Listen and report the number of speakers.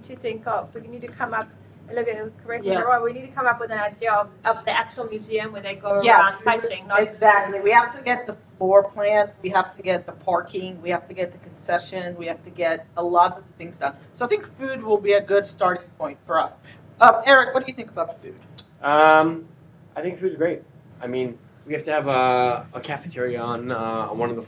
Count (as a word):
three